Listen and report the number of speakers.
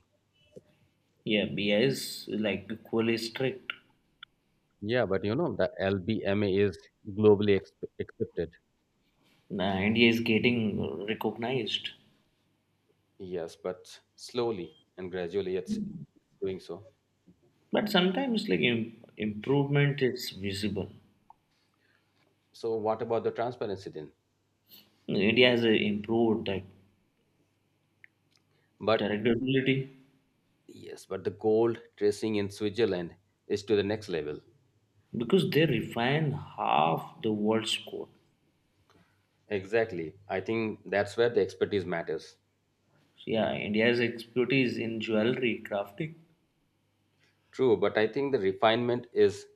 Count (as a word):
two